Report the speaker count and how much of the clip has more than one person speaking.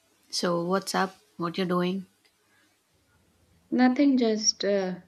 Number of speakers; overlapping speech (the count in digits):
2, no overlap